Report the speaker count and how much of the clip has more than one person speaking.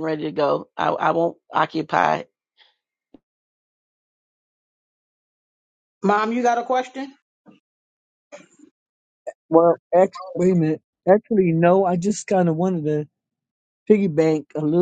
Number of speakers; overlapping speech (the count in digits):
3, no overlap